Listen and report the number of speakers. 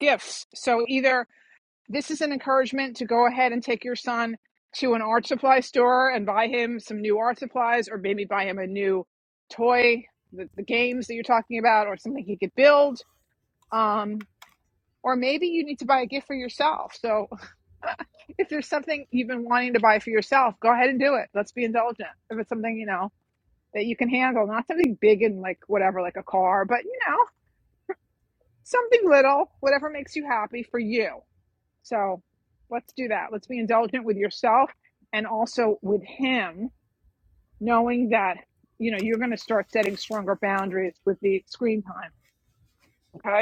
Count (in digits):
1